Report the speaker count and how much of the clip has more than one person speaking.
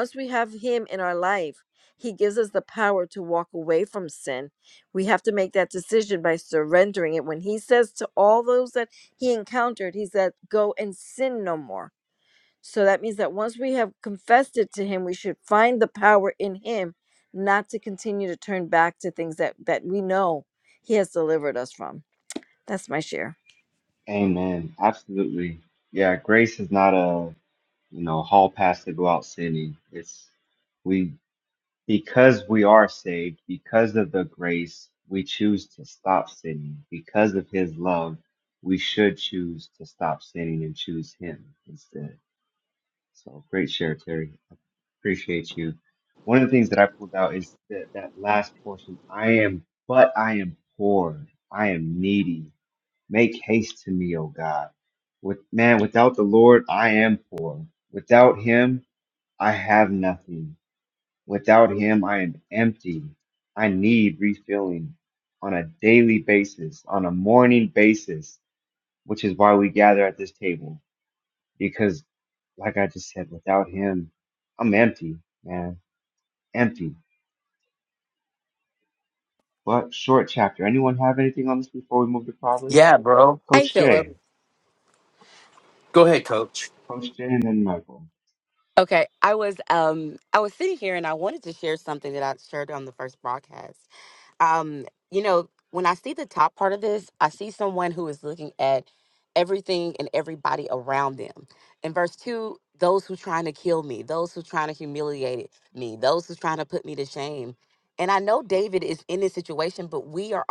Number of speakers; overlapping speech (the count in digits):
4, about 1%